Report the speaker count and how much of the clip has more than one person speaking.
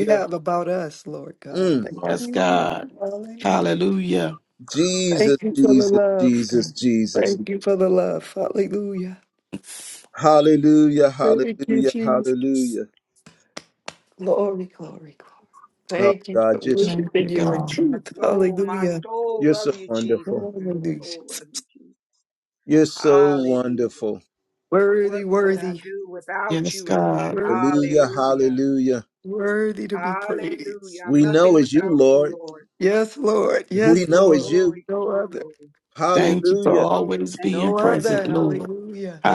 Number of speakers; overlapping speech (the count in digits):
4, about 46%